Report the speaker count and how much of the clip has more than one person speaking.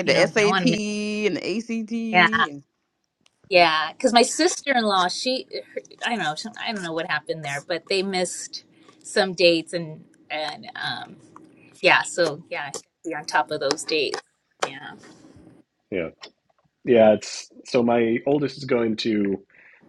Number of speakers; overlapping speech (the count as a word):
three, about 5%